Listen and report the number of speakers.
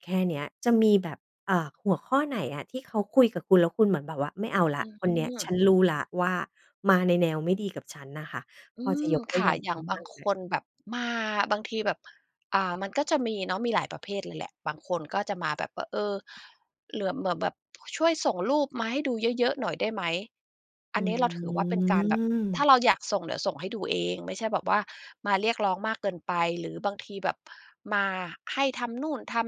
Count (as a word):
two